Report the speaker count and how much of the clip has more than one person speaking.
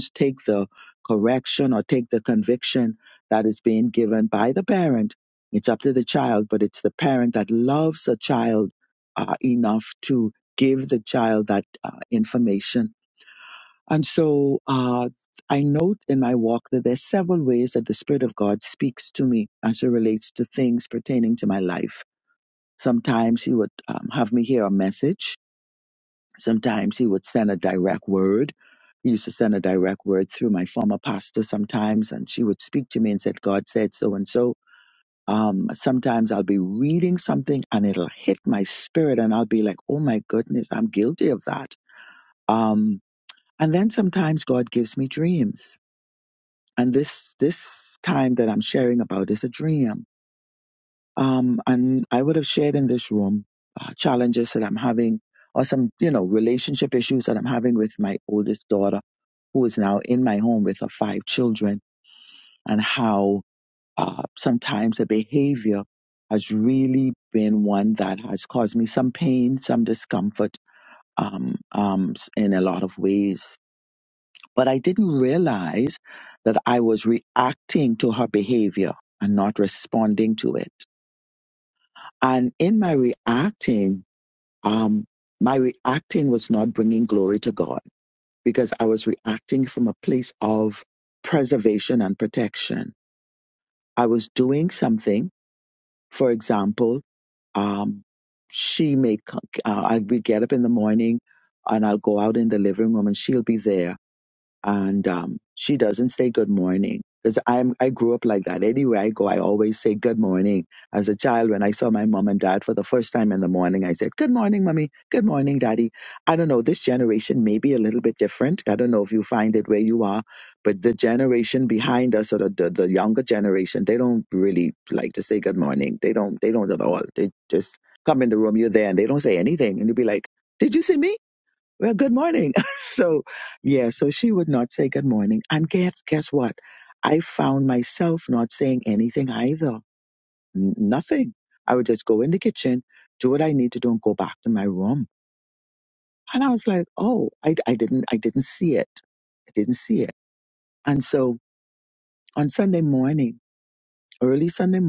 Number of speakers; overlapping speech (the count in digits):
1, no overlap